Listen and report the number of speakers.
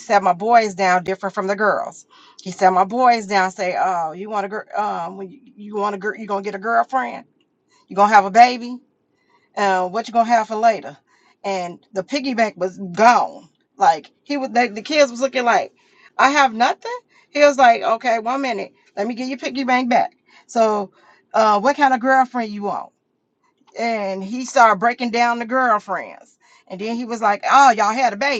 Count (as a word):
one